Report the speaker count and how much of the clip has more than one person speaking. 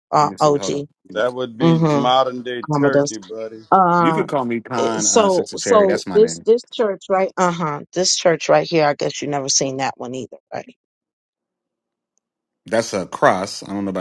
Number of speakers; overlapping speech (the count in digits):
3, about 25%